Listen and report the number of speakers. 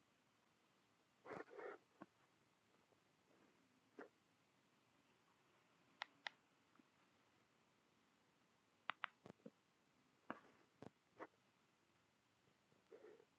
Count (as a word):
zero